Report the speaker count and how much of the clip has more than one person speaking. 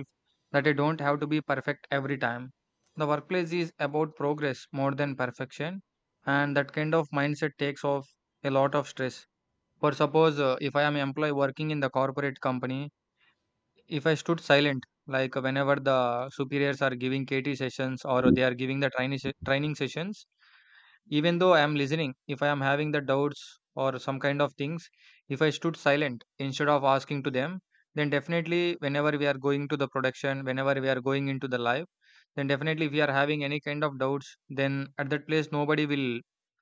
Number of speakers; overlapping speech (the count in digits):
1, no overlap